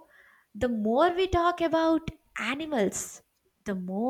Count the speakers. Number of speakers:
1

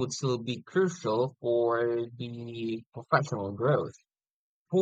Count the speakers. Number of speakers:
1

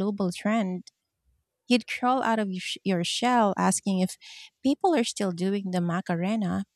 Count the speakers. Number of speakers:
1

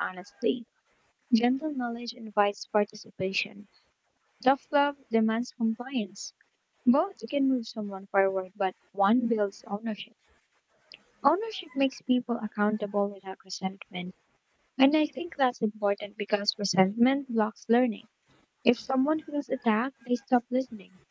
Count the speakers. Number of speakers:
1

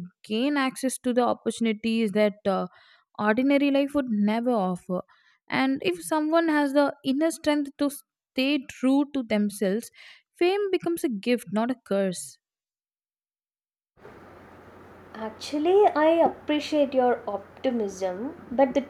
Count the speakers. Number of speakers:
2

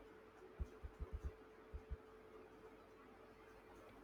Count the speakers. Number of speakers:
0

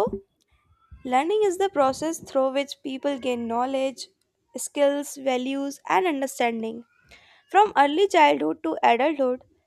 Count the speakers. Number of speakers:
1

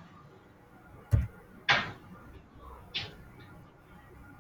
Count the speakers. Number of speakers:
0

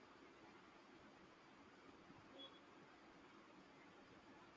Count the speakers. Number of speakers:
0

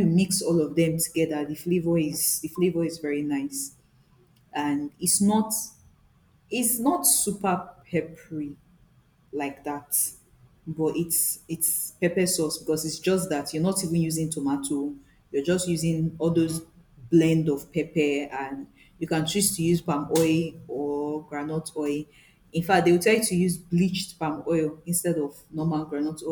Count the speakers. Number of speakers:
1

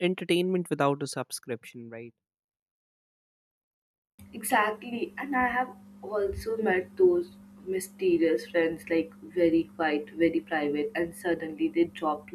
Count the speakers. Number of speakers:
2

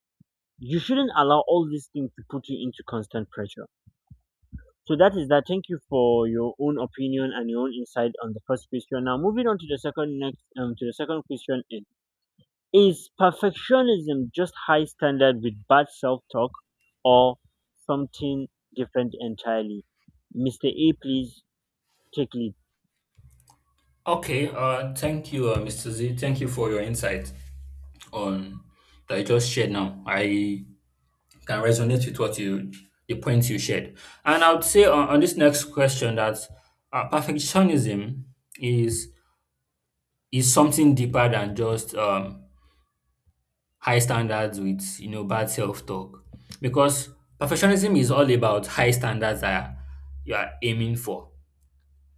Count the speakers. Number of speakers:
2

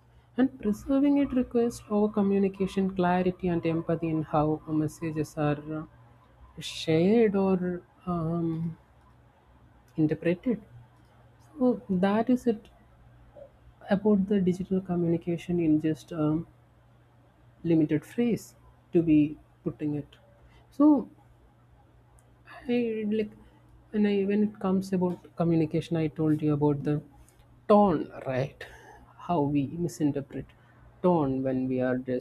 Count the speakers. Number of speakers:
1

